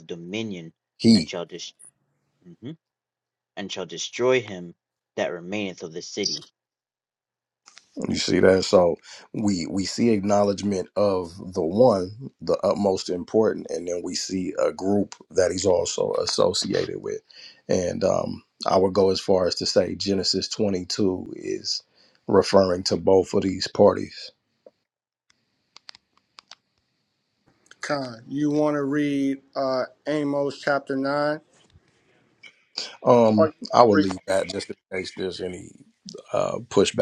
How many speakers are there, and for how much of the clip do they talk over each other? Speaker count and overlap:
three, about 2%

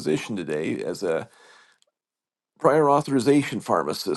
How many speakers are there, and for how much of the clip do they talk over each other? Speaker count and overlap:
one, no overlap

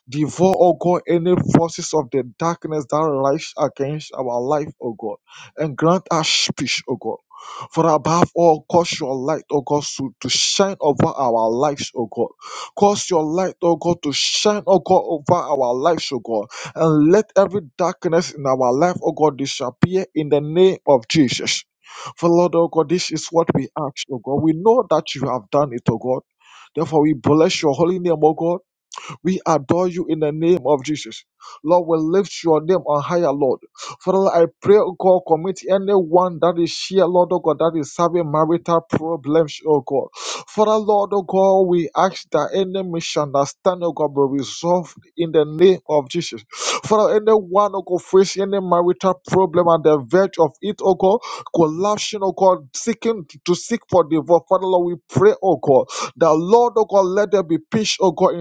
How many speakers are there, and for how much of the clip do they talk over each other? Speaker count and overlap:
one, no overlap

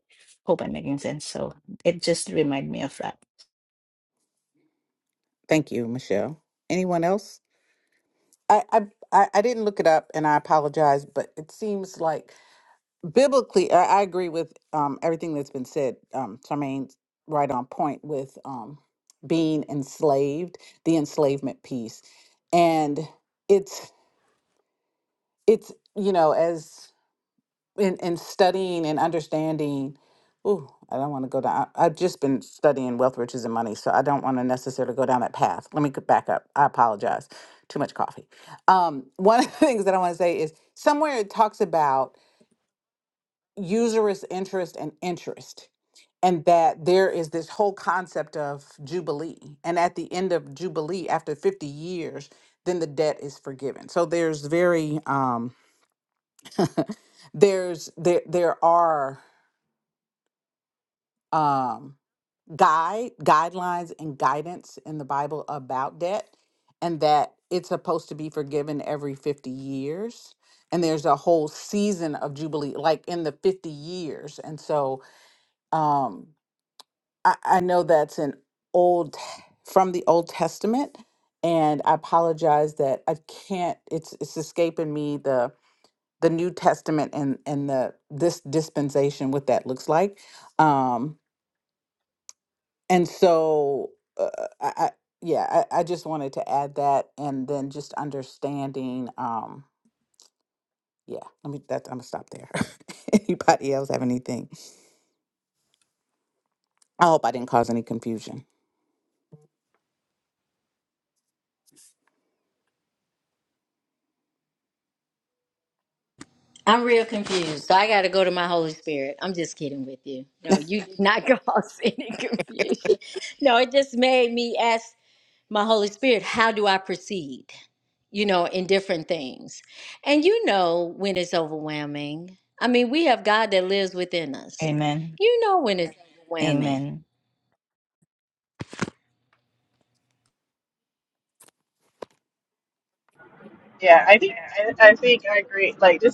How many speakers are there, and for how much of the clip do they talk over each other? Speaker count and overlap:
four, under 1%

